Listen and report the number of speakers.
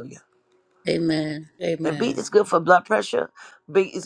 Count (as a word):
two